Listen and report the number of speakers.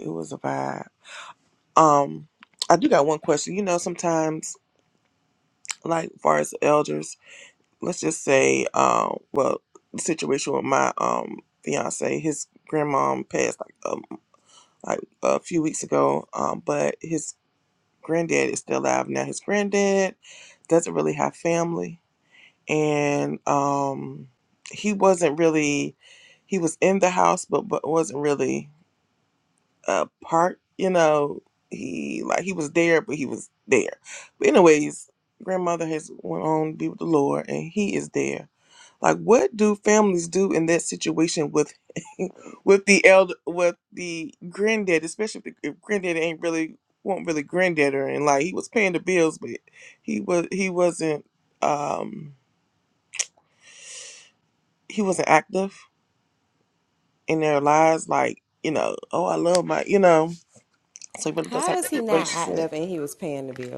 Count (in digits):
2